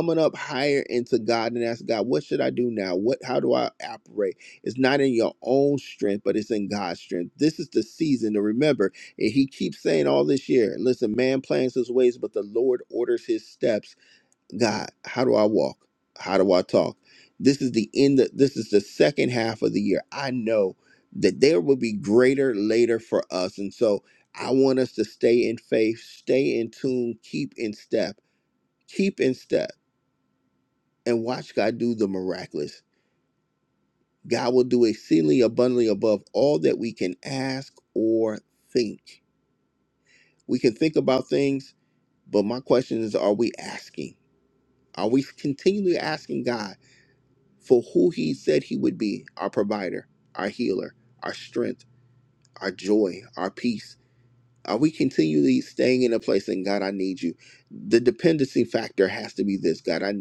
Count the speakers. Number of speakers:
1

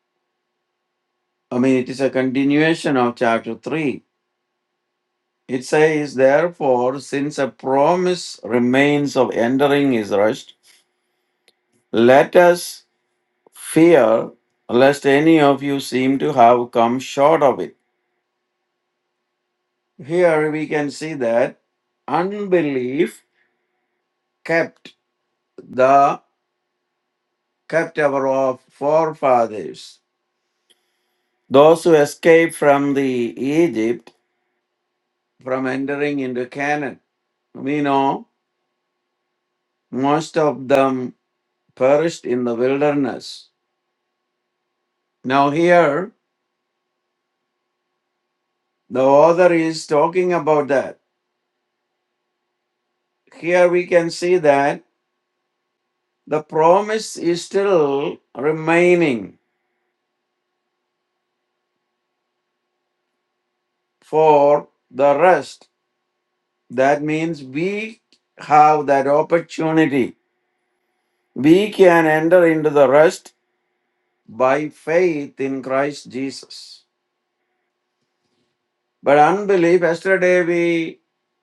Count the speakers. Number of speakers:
1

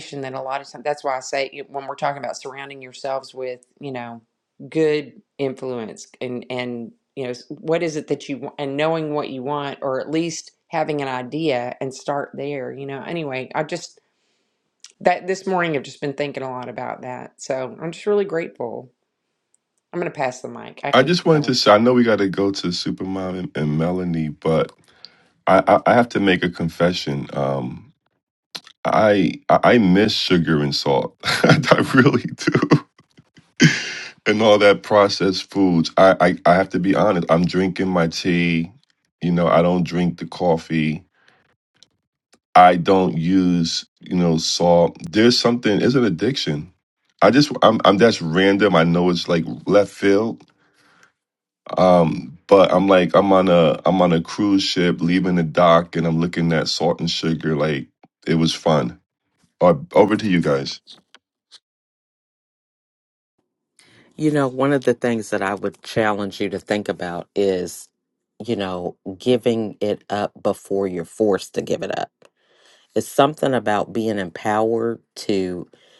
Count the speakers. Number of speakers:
3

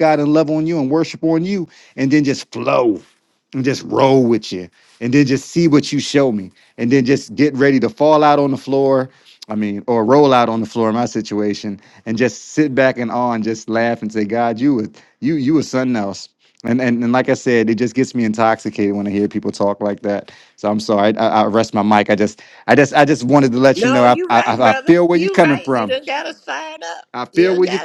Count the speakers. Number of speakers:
2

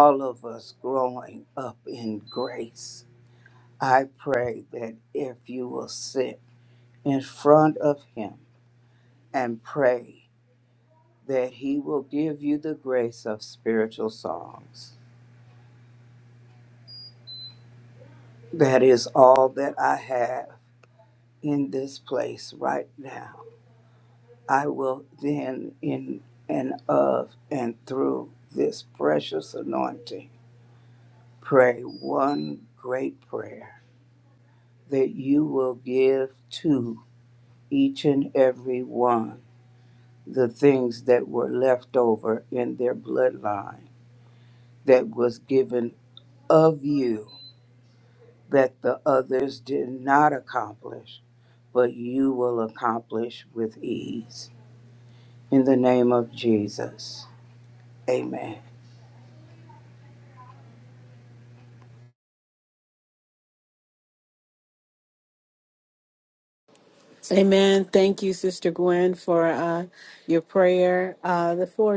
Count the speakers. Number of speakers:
2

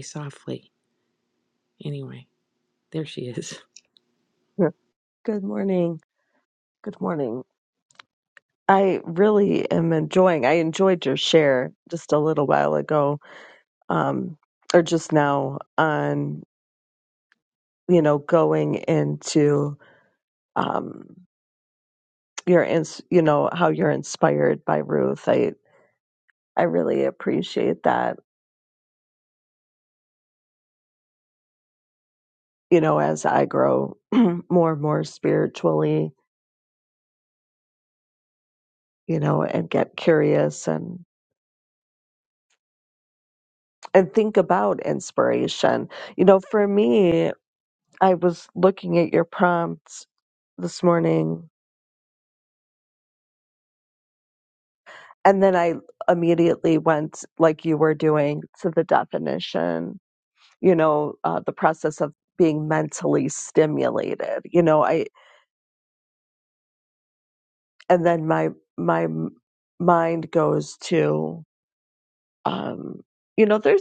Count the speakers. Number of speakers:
2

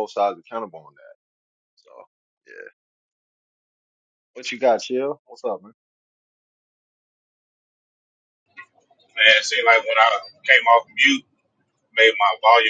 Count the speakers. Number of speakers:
2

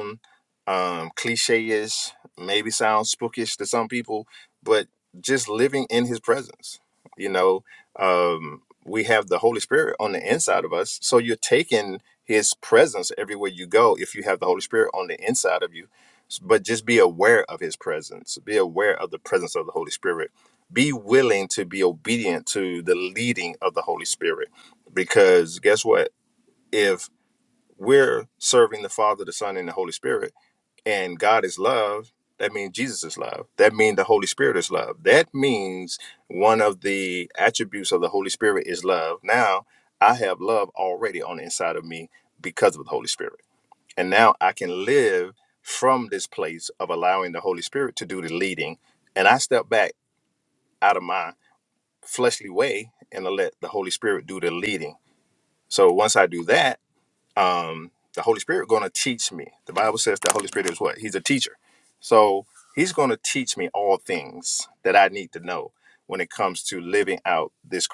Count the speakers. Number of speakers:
1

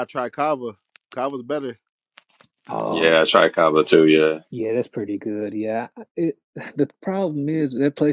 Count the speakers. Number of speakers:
3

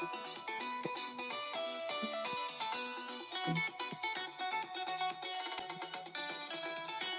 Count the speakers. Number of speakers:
0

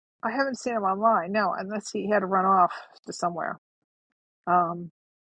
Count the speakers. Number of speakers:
1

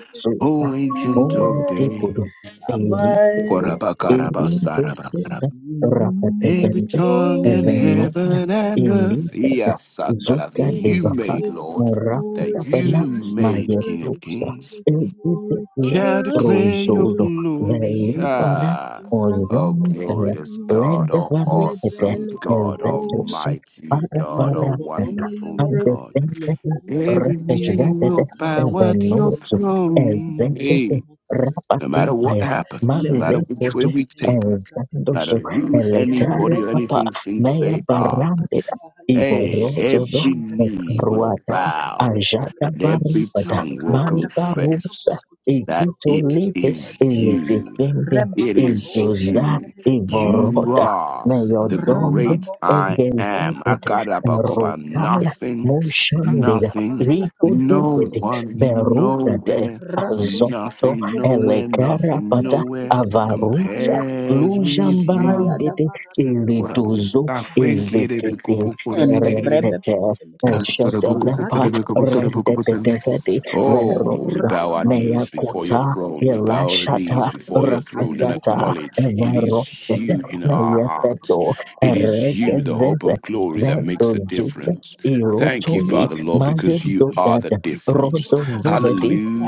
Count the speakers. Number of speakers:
3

